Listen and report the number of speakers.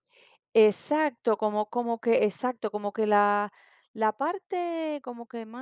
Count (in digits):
1